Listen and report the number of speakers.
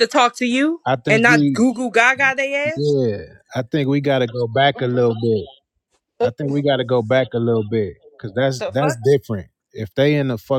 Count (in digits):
2